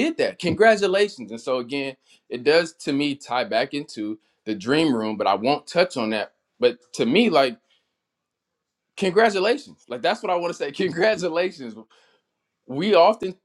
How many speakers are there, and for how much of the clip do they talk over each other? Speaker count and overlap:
1, no overlap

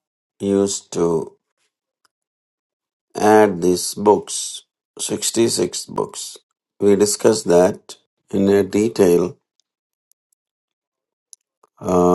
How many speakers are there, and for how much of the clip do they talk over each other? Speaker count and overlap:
1, no overlap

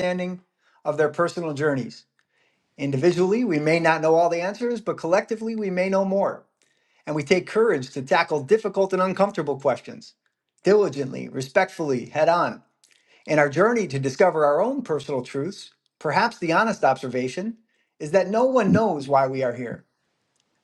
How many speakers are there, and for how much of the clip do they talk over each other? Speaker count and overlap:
1, no overlap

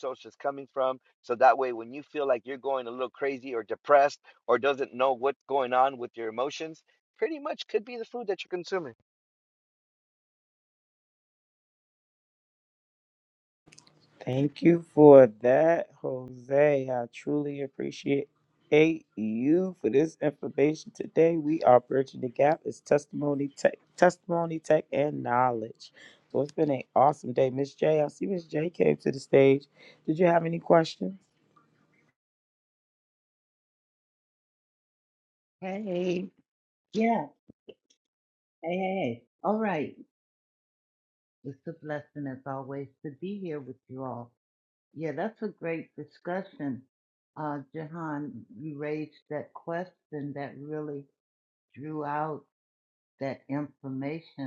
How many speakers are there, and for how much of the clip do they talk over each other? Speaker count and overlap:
3, no overlap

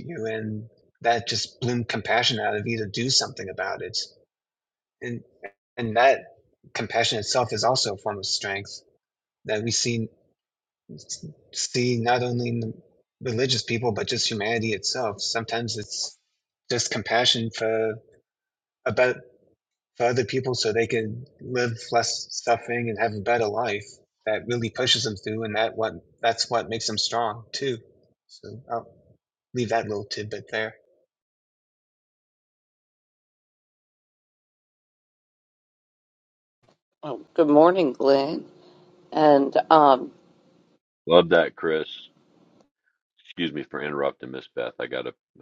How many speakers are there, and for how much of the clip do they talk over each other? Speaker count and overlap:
3, no overlap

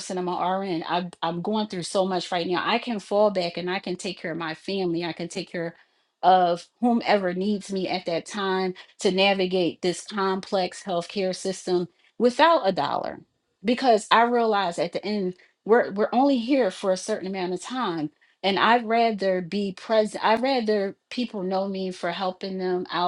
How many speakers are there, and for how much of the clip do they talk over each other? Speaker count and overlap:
1, no overlap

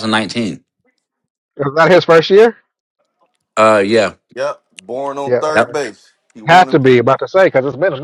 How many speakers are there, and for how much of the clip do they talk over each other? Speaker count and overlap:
3, about 8%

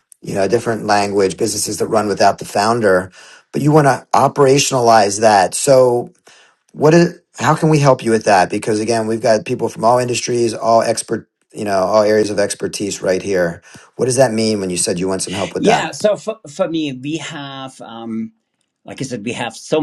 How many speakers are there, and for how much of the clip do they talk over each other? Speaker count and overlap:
2, about 1%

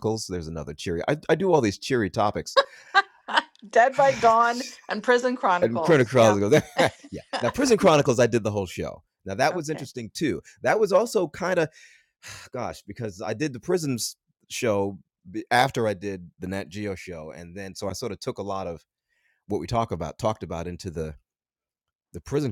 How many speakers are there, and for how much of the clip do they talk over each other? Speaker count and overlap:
2, about 5%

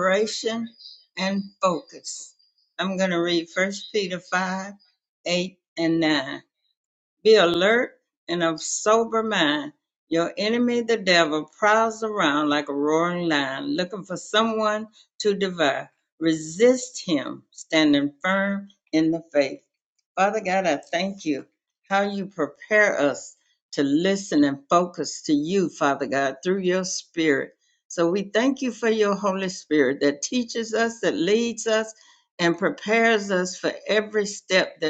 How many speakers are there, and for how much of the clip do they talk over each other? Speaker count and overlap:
1, no overlap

